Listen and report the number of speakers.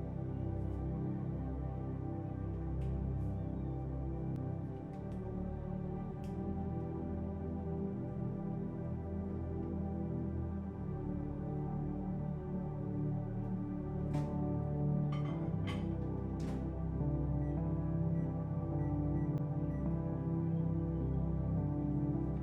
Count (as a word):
zero